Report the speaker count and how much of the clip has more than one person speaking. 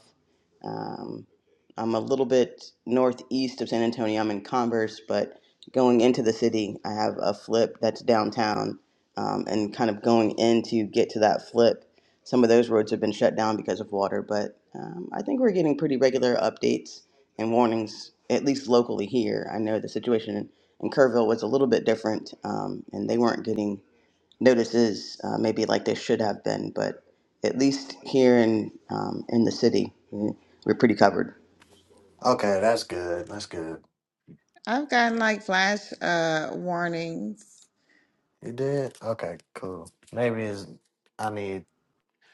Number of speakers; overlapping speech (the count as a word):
three, no overlap